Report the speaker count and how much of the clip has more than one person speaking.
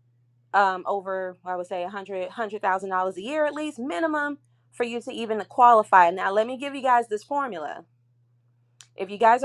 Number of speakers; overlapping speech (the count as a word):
one, no overlap